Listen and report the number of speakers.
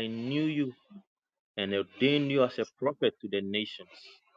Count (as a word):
one